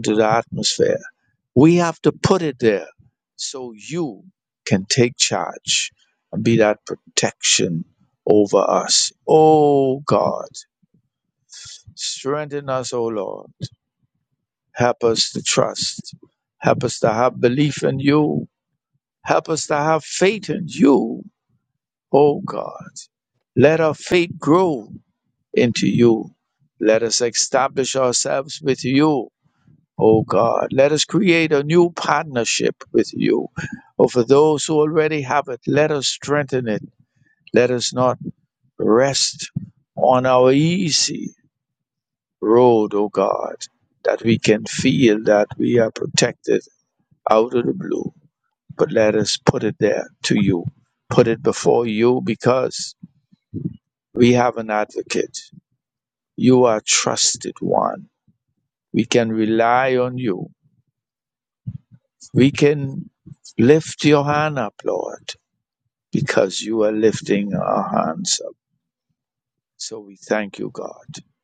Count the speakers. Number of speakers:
one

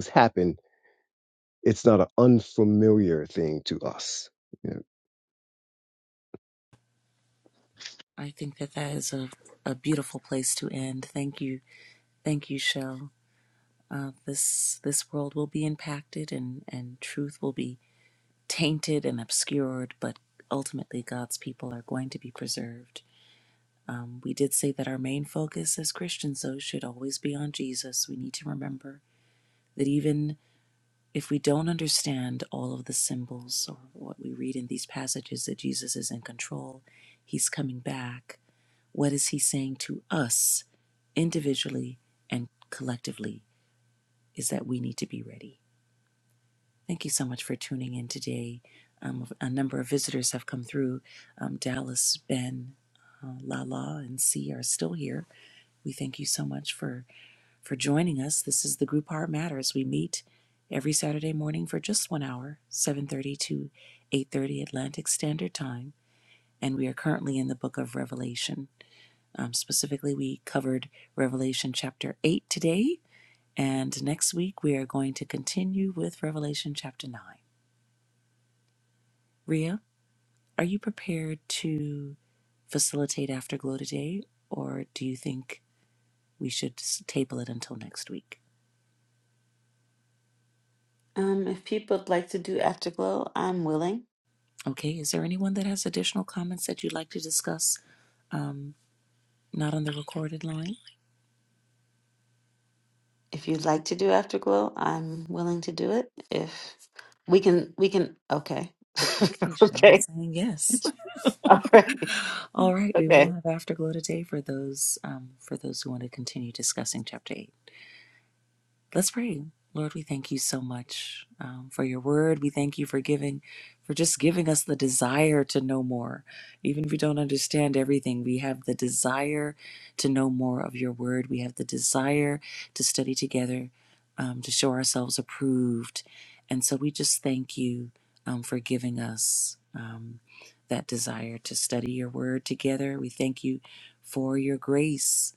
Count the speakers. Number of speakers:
three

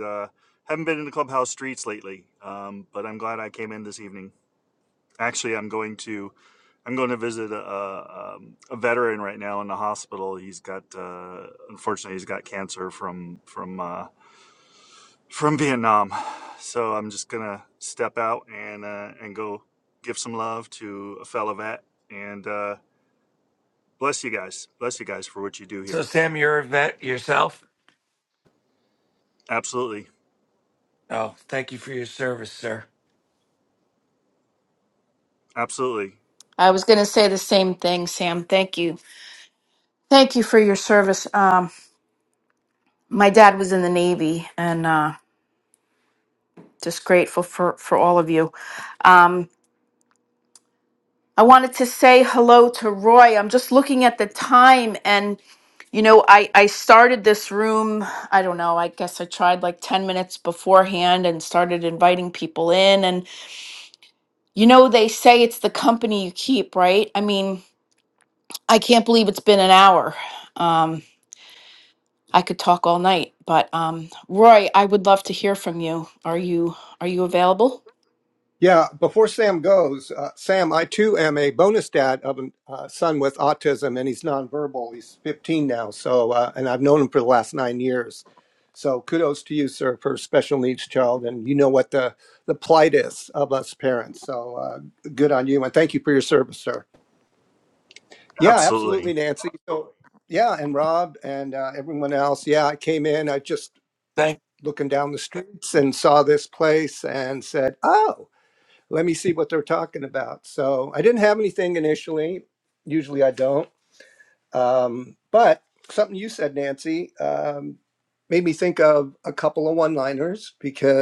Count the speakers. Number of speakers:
four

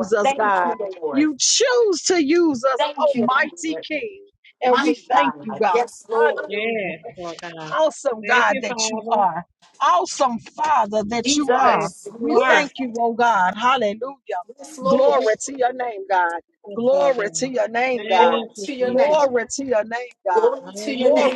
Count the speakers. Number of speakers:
three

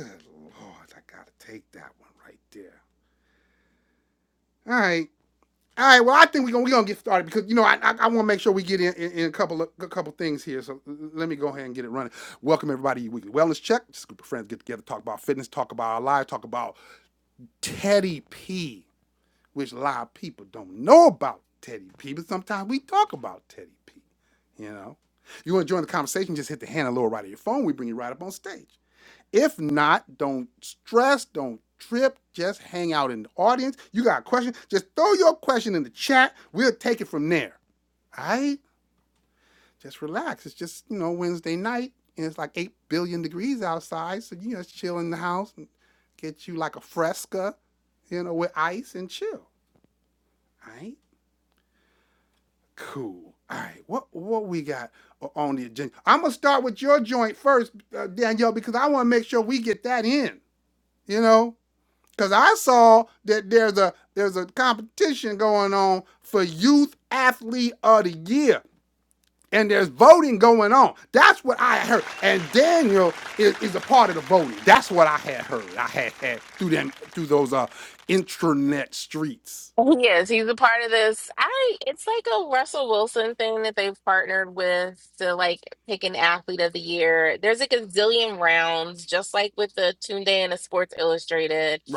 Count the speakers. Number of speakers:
two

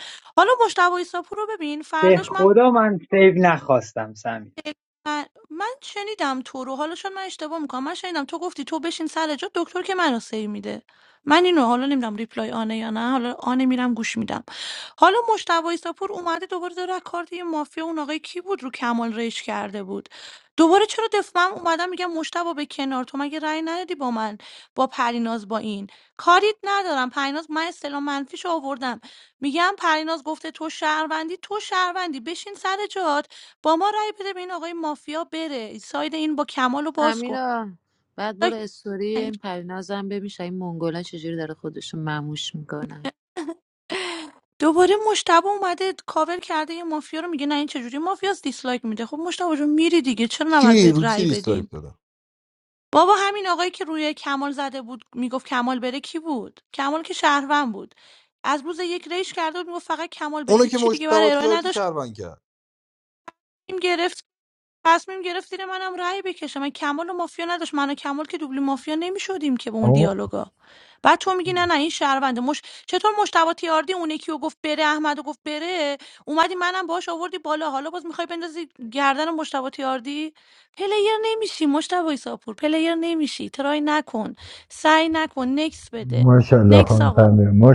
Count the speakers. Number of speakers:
five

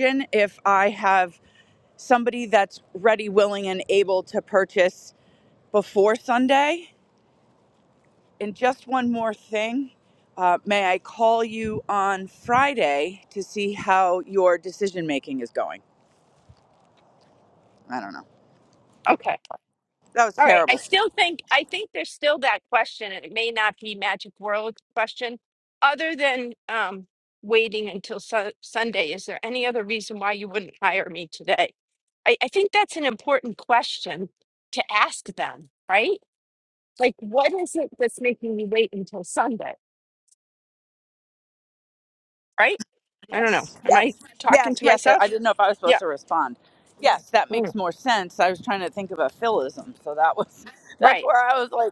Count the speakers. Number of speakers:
two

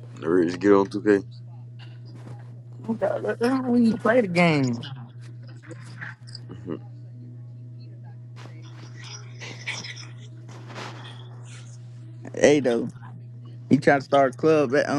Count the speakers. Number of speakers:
two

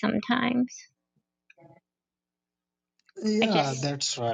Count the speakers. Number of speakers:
two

